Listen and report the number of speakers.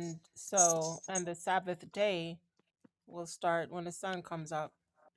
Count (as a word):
one